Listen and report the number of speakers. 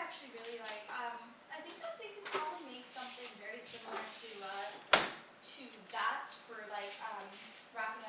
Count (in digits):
1